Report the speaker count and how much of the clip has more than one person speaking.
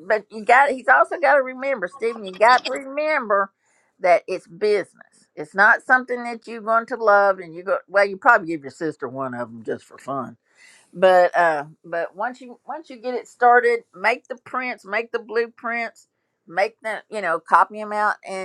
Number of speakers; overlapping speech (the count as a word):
one, no overlap